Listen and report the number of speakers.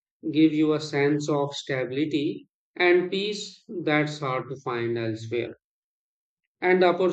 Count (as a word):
one